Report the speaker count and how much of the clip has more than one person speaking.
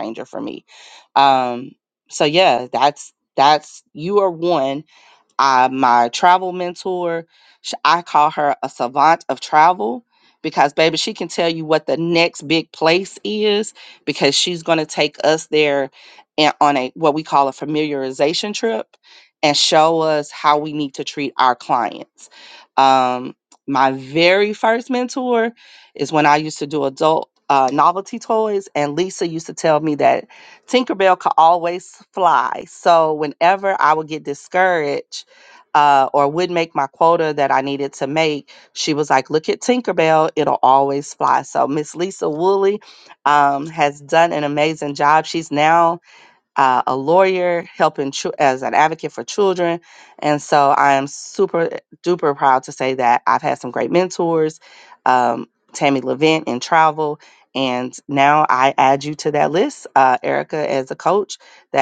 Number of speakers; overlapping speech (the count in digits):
1, no overlap